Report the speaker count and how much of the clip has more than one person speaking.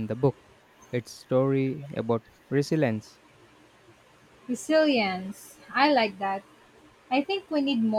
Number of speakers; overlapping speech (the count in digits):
2, no overlap